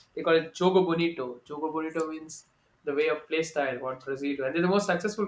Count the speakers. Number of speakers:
one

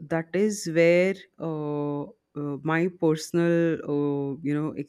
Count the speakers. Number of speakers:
one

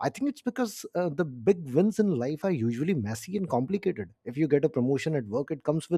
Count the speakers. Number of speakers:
one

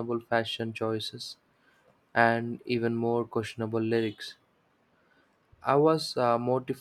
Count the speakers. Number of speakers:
one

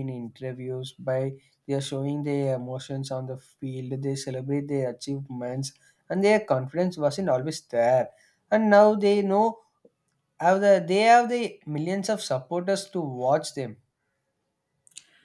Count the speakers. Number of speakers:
one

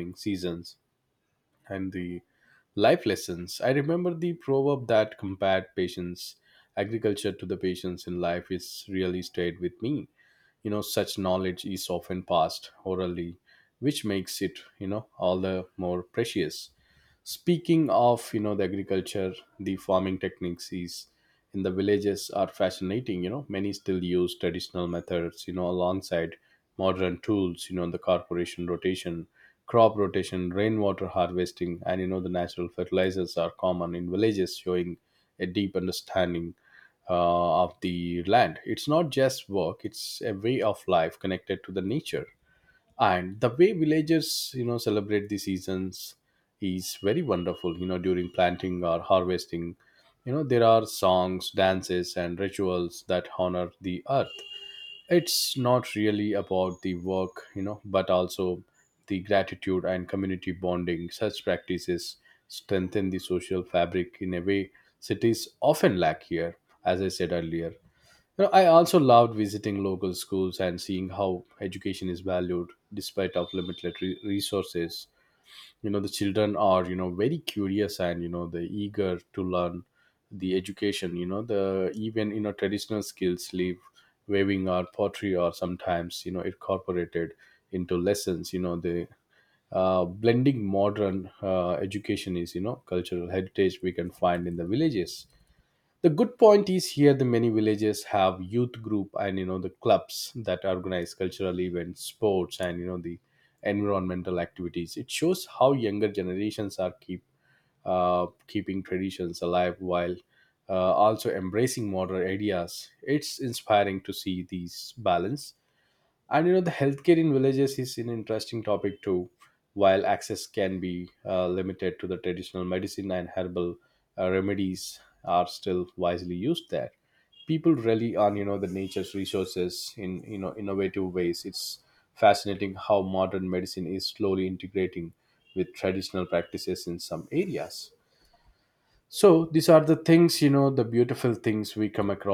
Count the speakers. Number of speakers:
one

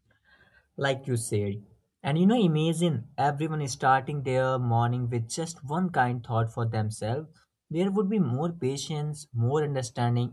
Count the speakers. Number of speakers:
one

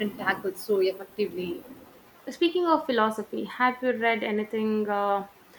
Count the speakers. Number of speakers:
two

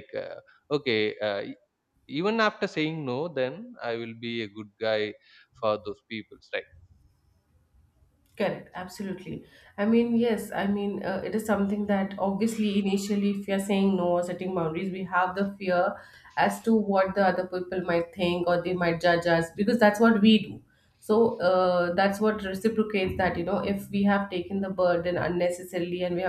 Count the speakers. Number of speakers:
two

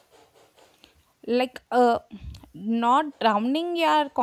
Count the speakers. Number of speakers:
one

